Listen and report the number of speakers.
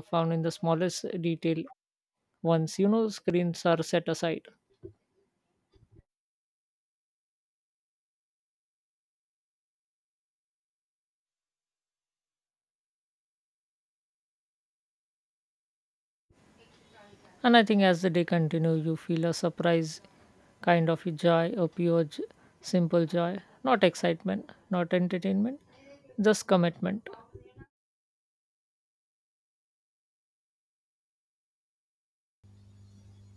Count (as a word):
one